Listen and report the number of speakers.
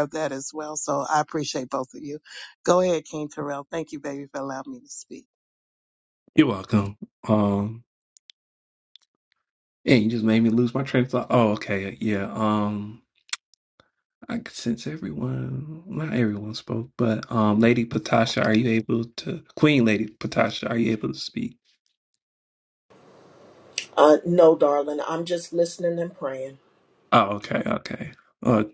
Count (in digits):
3